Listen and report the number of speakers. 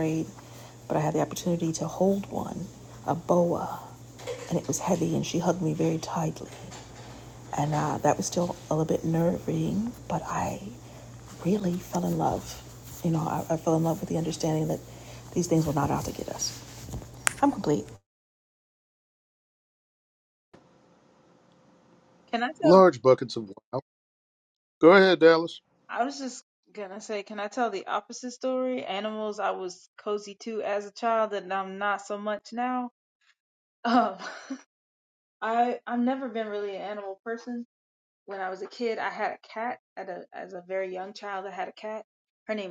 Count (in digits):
3